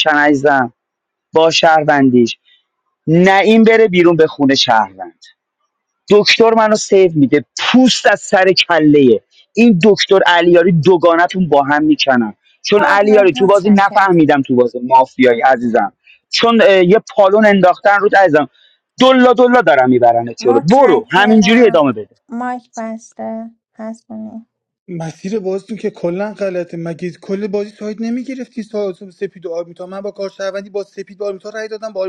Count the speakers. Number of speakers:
3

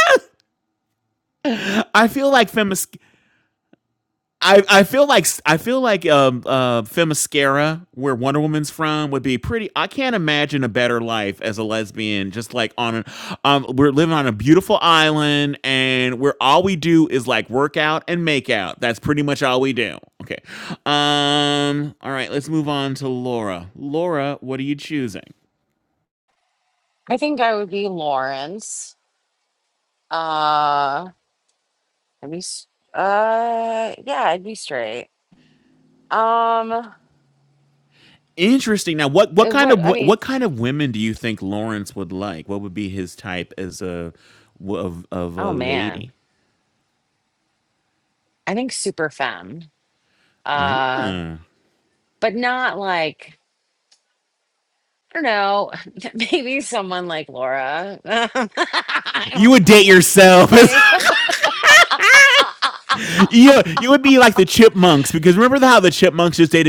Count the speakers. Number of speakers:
2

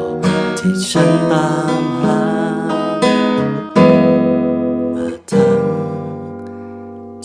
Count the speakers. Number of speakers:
1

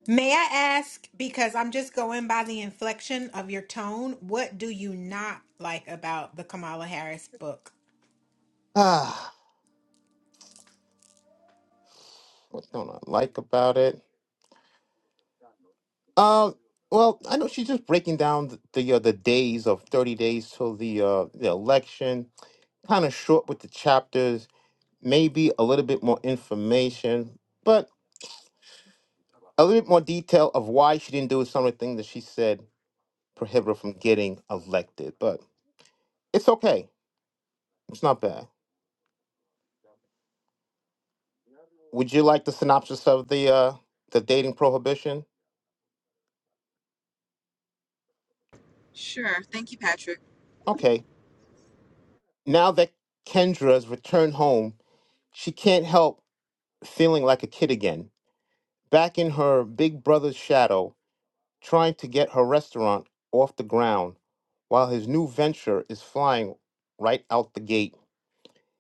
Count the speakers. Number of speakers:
3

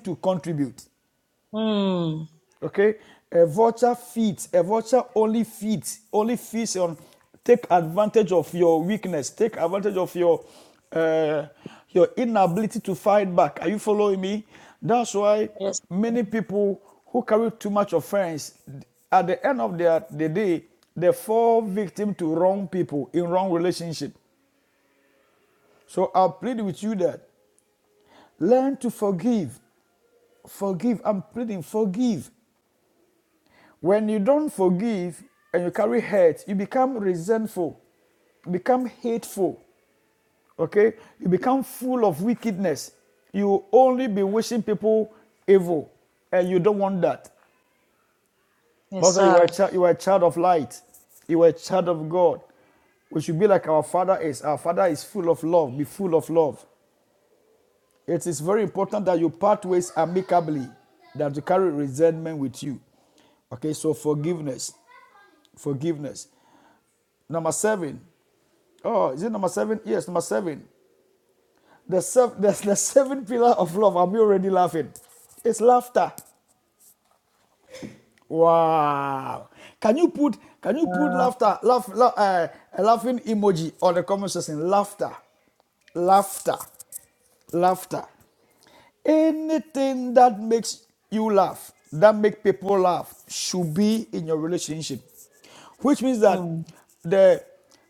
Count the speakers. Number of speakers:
2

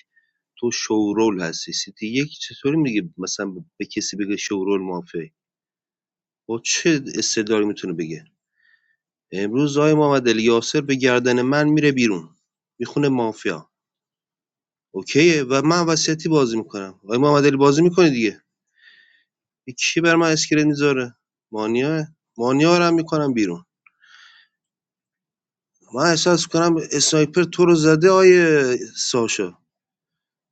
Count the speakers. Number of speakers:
1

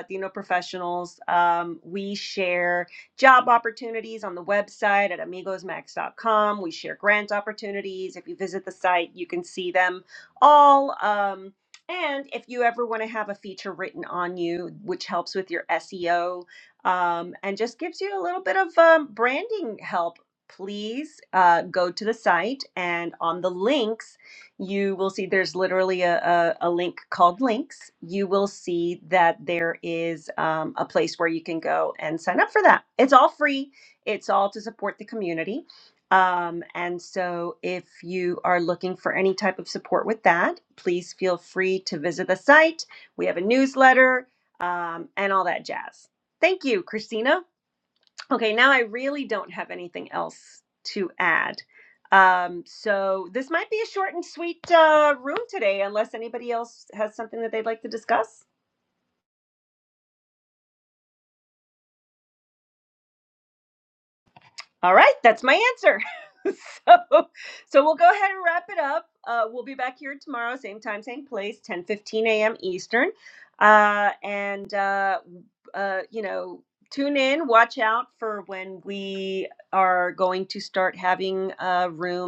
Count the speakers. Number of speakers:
1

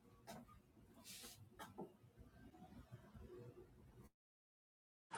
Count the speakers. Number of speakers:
0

